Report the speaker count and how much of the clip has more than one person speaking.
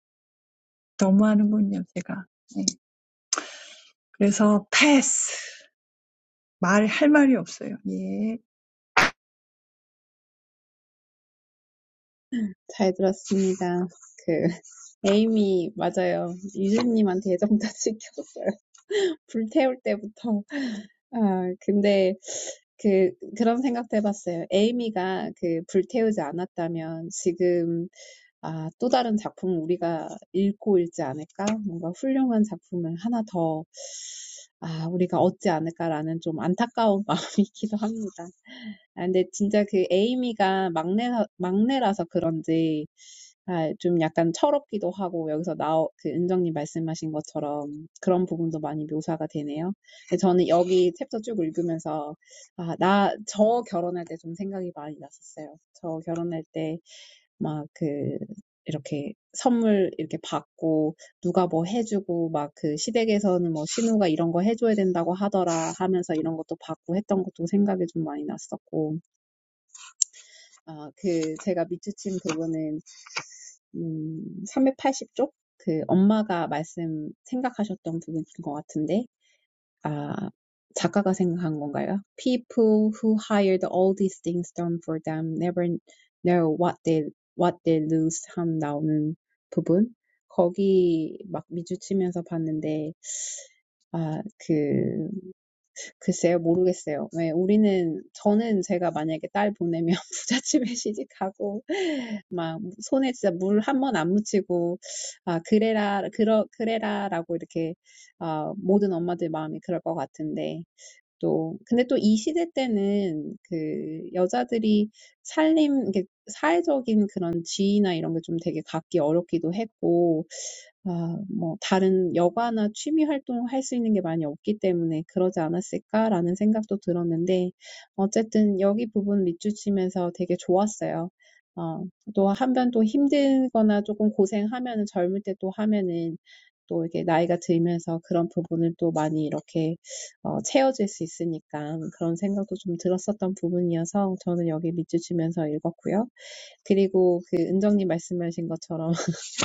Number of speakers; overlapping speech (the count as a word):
two, no overlap